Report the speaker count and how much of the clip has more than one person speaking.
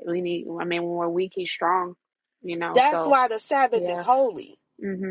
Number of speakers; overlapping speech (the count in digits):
2, about 14%